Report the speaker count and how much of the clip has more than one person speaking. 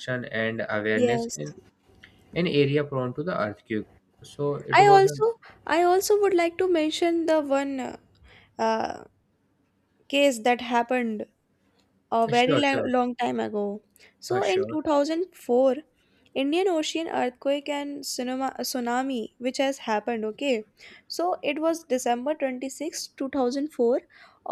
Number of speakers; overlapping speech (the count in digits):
2, about 7%